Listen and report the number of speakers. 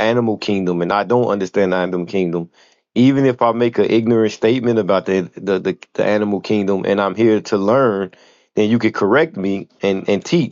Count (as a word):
one